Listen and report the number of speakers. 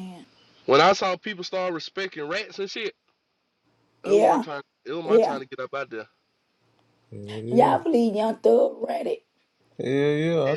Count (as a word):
three